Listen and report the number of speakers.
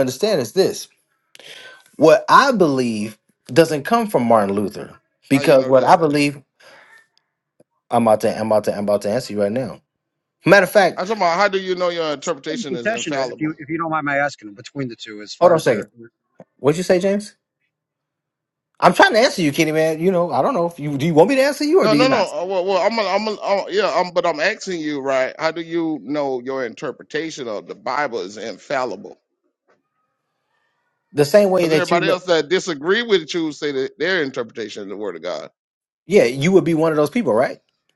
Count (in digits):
3